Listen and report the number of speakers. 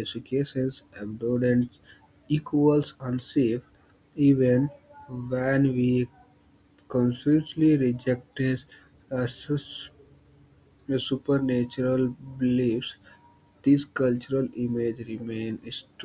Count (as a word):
one